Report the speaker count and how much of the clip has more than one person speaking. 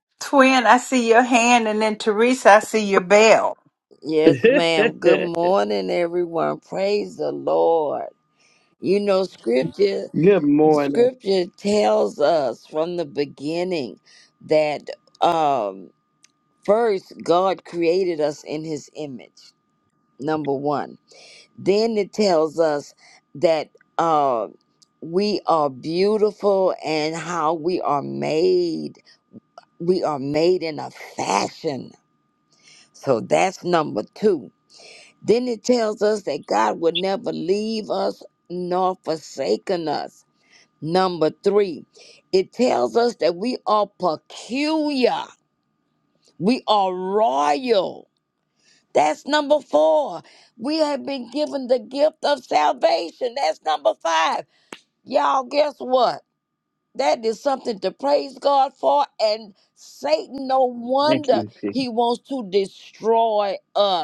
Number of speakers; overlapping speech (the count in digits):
3, about 3%